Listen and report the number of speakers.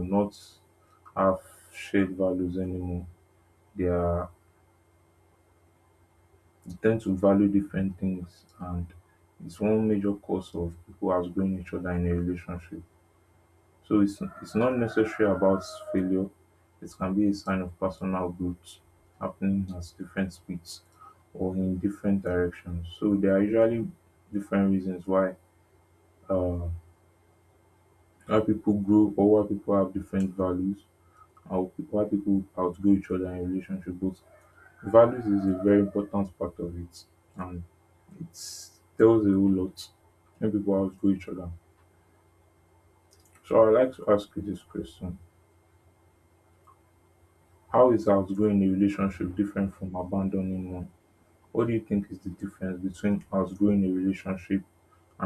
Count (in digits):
1